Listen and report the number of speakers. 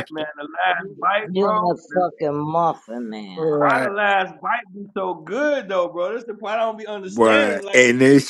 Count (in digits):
3